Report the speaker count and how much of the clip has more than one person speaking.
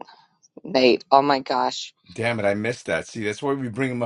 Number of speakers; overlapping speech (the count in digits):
2, no overlap